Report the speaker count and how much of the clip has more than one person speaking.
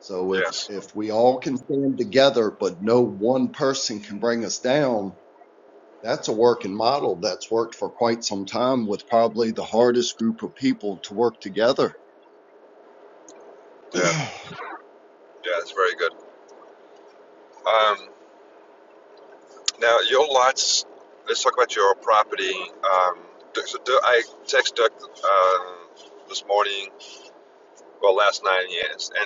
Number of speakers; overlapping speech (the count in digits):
2, about 1%